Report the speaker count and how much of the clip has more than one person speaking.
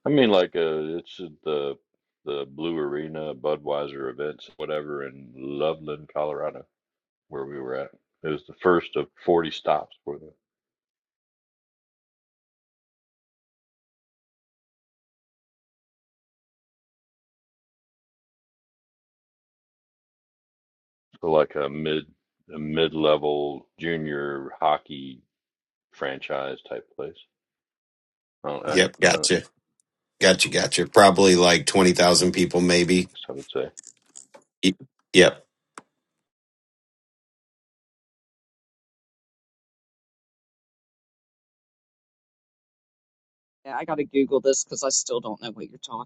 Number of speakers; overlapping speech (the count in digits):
3, about 1%